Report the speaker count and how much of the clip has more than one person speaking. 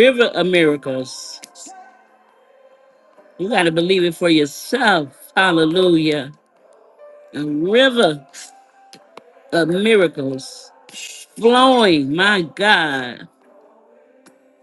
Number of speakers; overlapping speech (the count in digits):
1, no overlap